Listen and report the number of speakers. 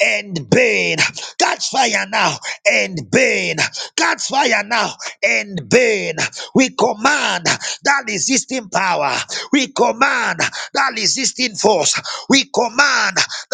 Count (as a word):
one